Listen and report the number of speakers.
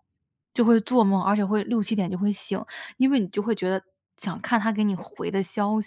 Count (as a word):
one